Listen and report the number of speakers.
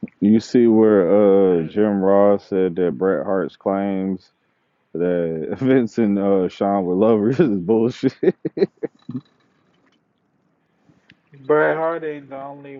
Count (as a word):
two